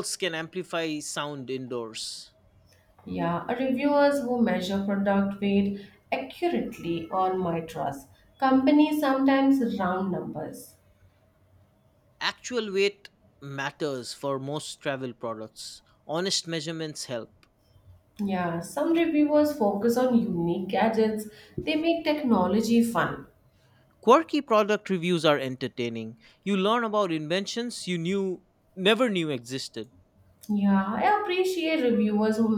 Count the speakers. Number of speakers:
2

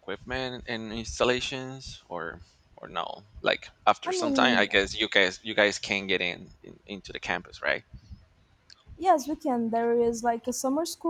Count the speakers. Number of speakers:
2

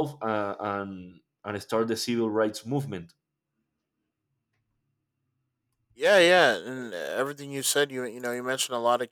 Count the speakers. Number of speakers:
2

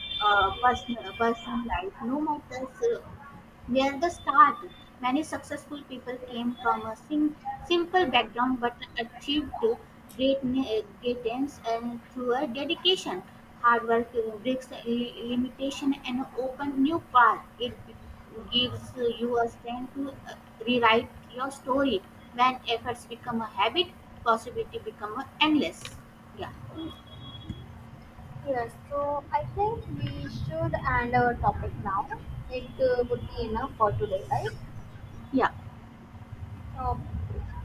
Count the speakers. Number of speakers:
2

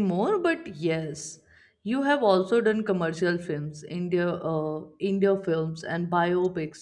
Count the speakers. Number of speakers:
1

